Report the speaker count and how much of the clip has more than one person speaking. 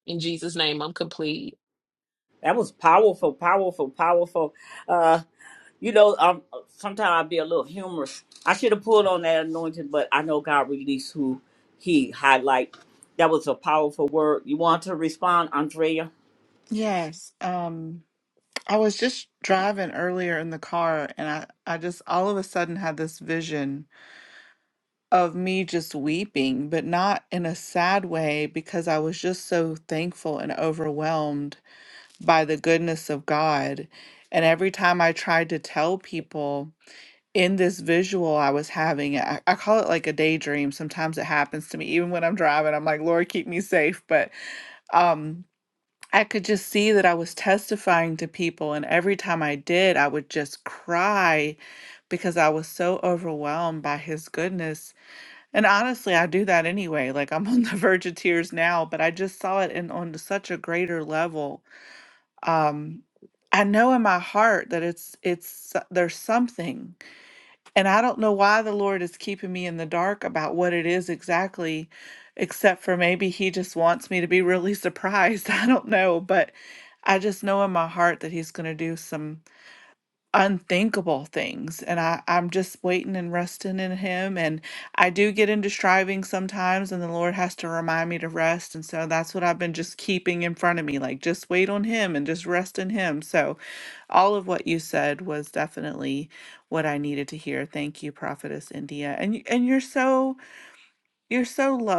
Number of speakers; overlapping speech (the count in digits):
3, no overlap